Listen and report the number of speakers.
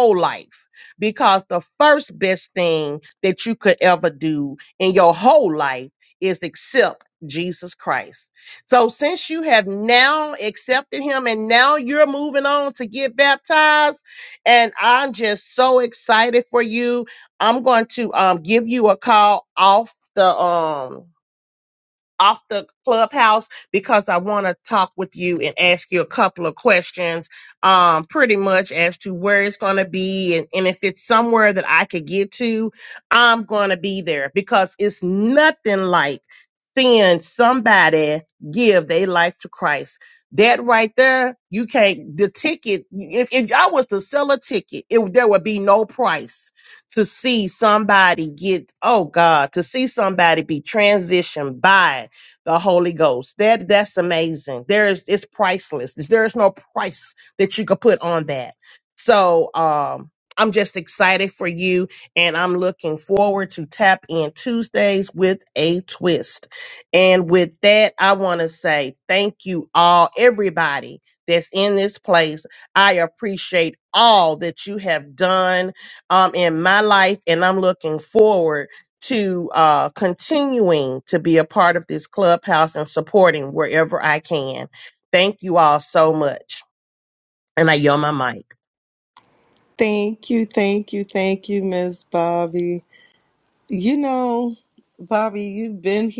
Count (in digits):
2